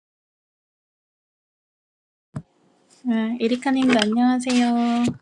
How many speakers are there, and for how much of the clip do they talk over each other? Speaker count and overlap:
one, no overlap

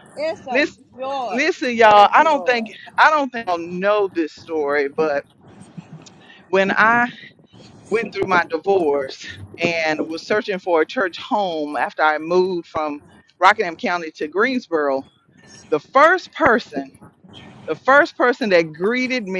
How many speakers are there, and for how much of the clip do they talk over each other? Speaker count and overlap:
two, about 6%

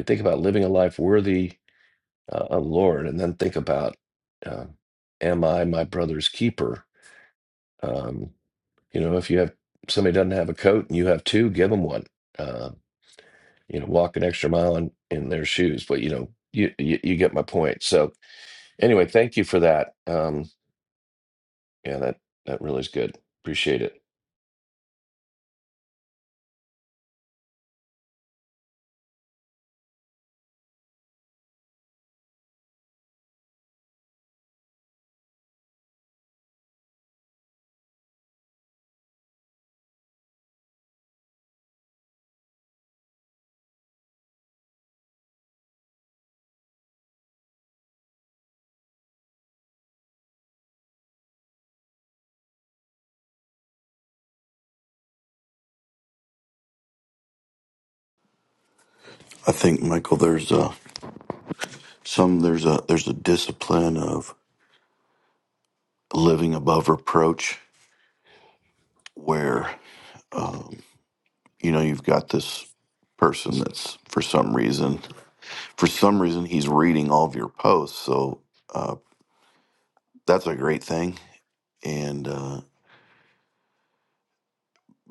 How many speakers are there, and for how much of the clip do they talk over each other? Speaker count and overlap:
two, no overlap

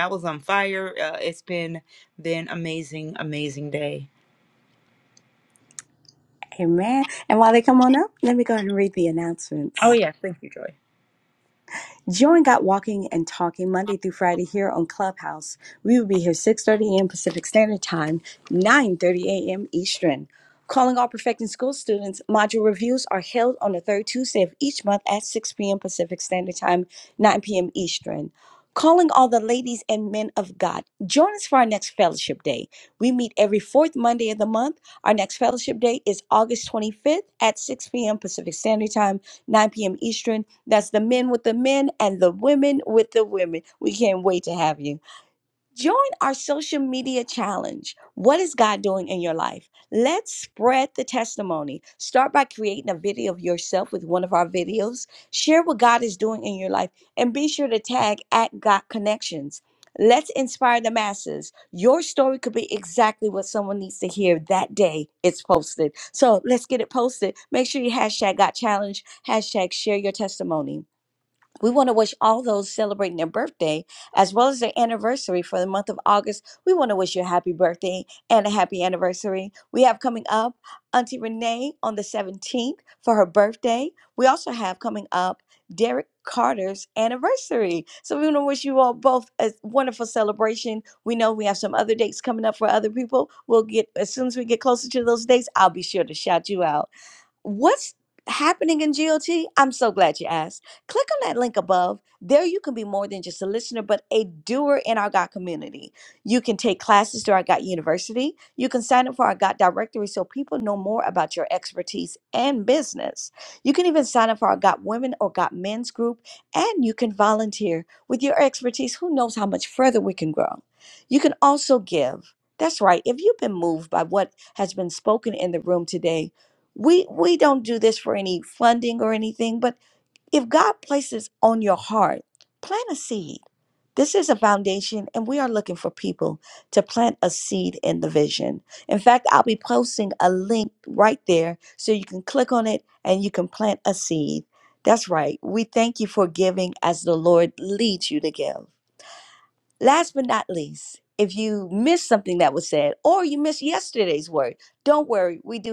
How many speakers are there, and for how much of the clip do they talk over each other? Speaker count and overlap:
two, no overlap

